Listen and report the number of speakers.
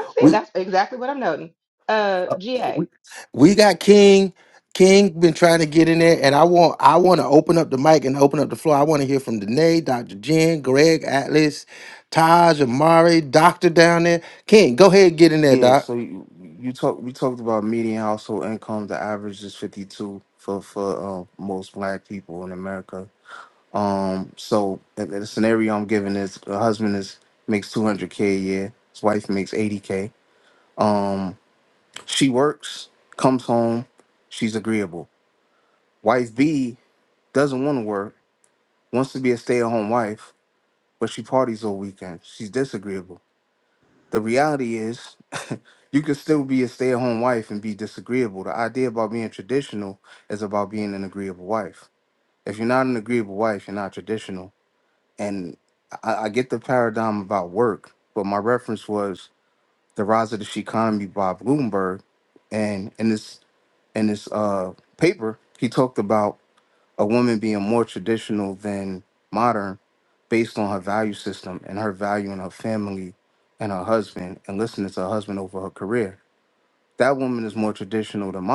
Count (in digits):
3